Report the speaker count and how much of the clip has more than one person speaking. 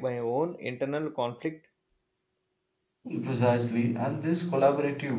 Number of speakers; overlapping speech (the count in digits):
2, no overlap